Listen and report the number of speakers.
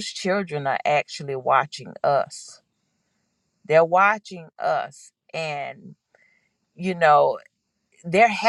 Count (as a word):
one